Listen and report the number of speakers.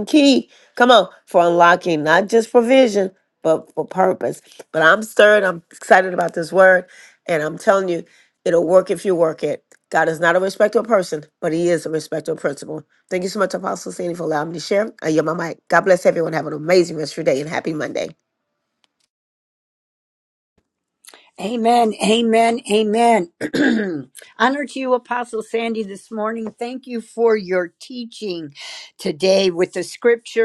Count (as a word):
two